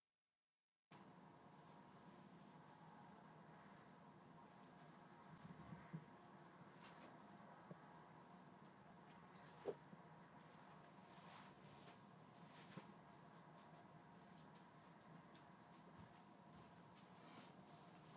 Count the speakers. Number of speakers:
0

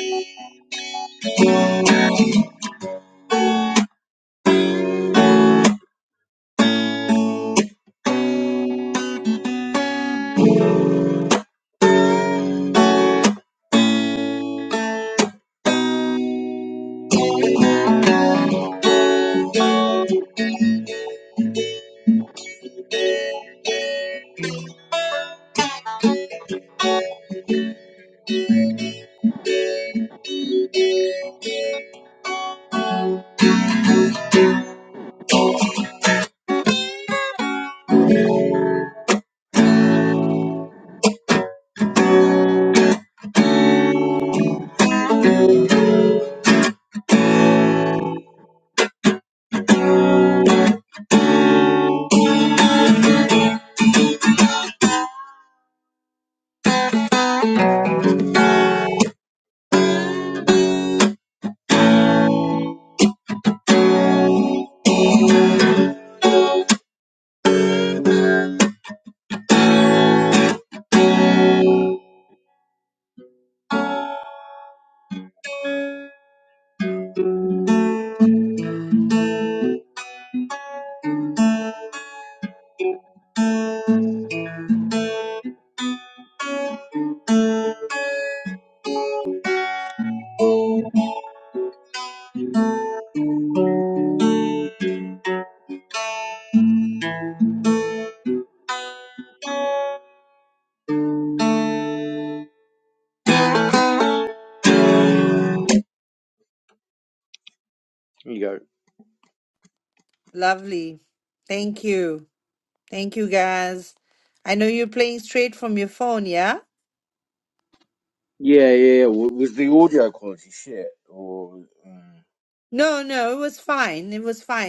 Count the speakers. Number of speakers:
2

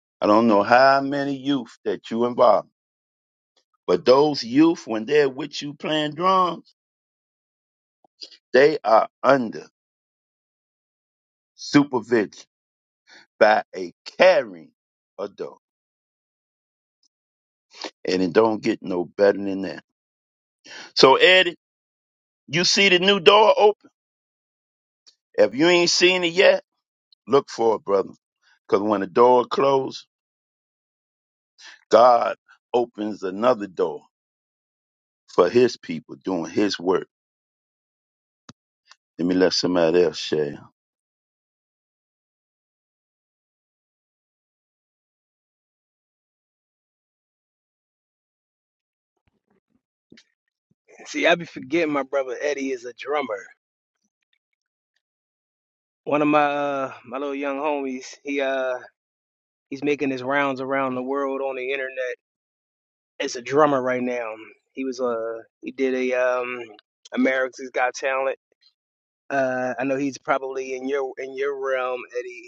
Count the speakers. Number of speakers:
2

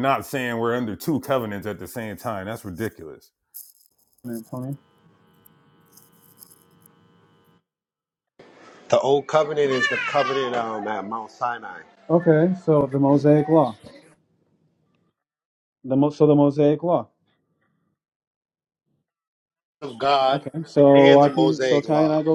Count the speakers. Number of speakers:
3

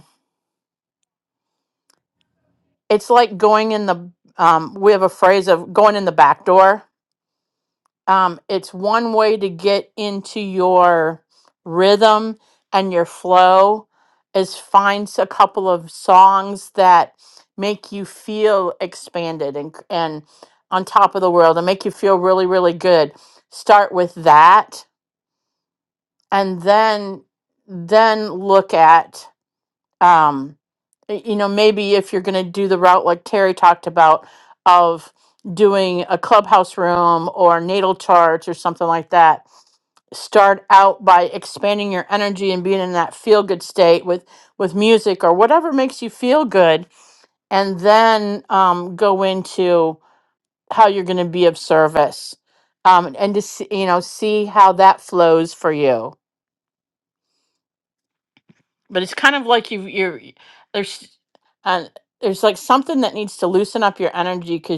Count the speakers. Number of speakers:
1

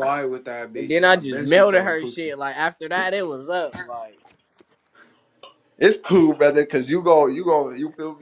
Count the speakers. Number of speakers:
3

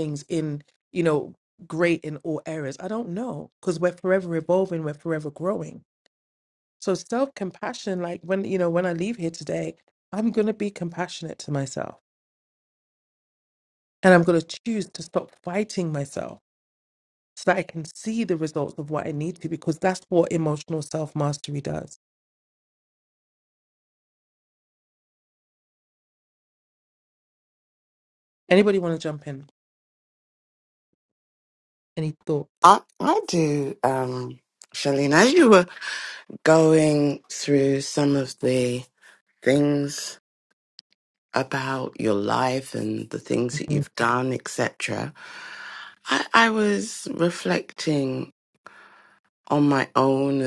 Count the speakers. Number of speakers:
2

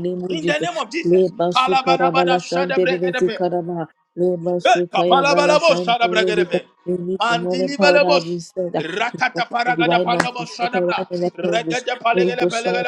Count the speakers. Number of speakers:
2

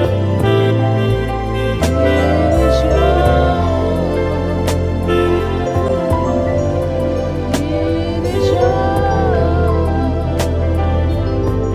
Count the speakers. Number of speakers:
0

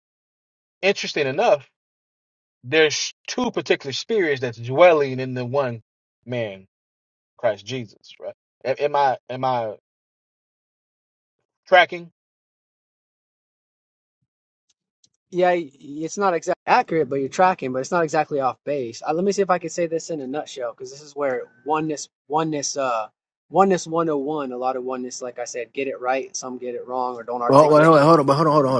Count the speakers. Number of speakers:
3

